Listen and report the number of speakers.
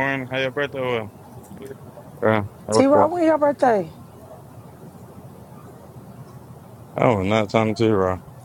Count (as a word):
two